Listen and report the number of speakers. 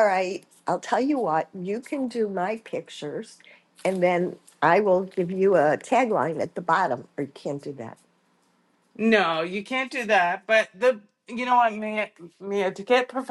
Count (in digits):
2